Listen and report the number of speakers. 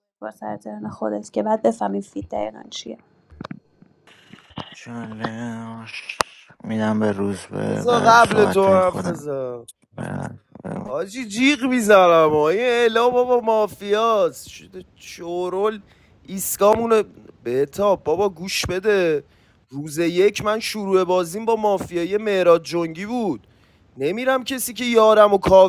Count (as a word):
three